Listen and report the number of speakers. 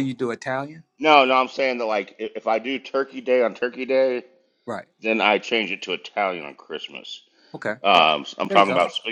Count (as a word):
two